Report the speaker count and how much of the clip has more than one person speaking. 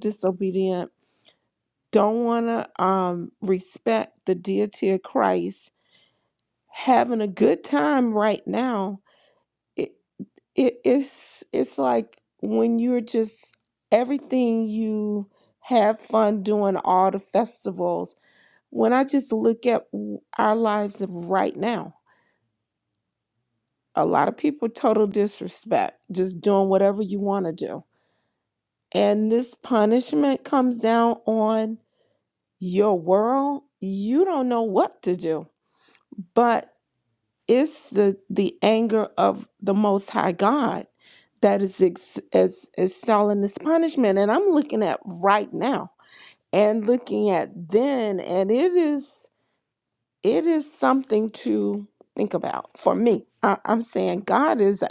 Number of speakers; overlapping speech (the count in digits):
1, no overlap